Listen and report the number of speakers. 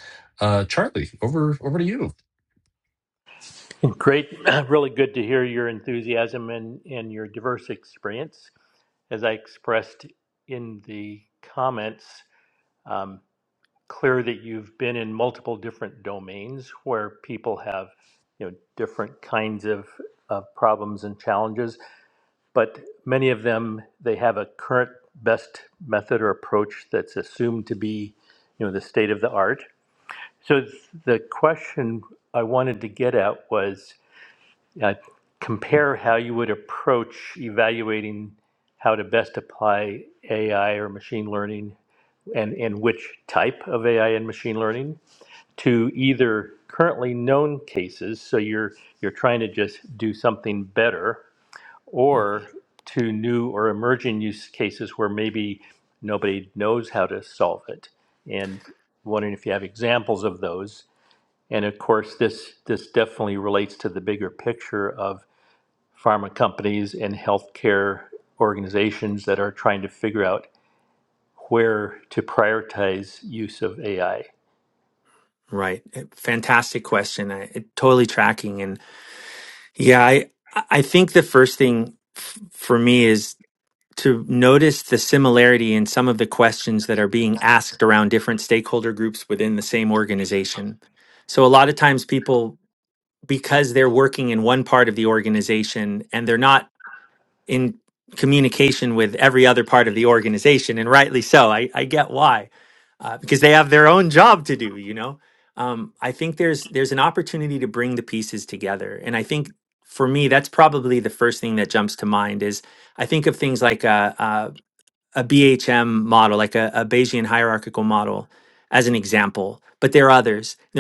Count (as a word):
three